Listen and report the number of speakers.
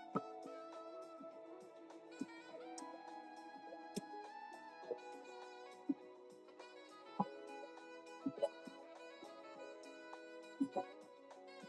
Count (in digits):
0